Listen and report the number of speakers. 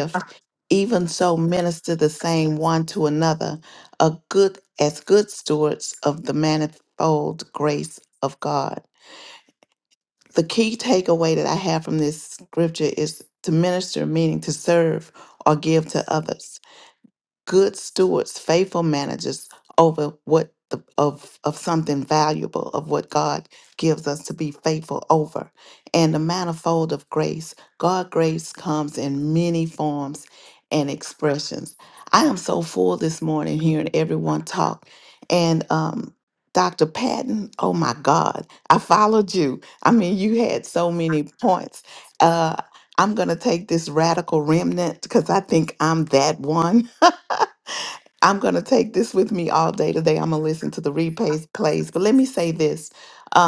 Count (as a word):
one